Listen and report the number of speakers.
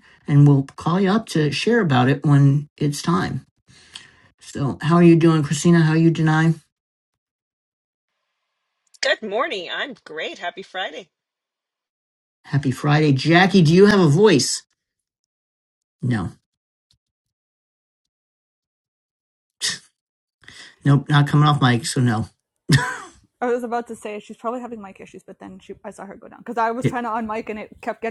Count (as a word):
three